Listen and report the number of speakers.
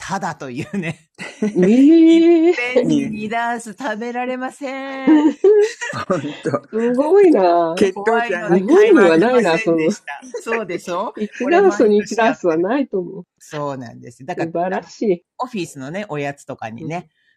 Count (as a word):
three